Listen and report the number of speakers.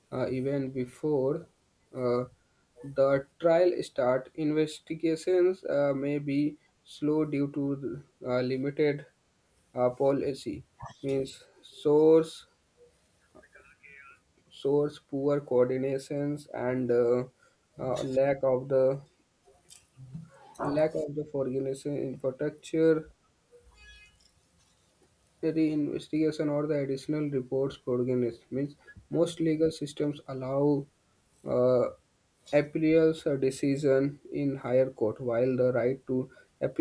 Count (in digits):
1